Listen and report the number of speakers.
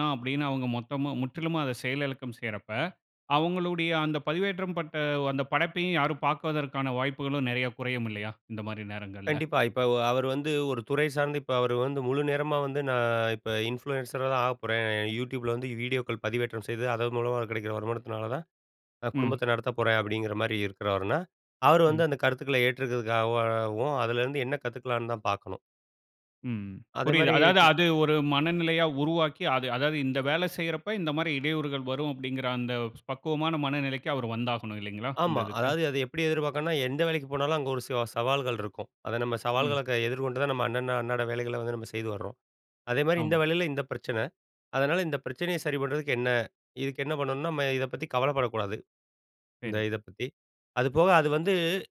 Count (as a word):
two